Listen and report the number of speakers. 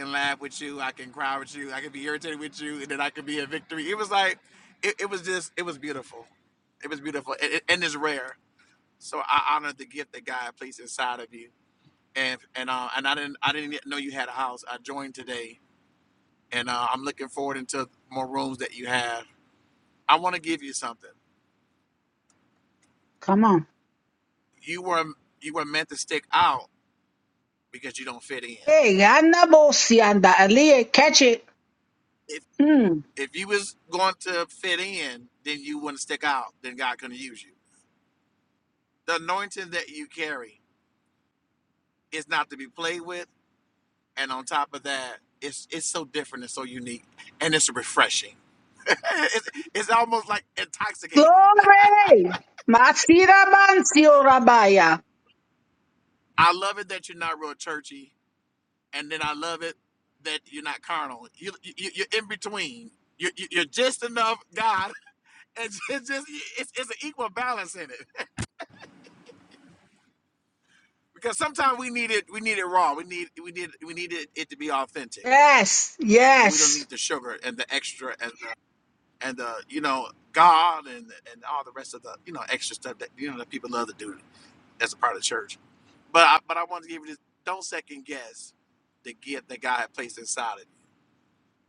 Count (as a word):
two